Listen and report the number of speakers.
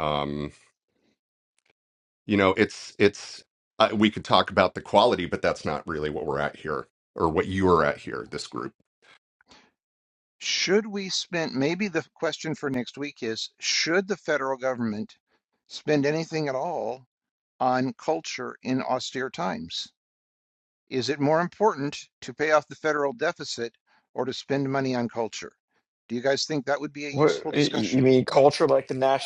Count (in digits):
3